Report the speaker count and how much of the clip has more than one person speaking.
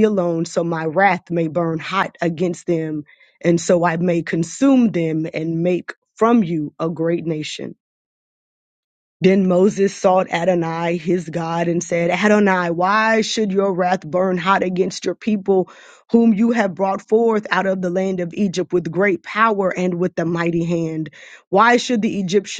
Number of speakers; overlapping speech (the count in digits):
1, no overlap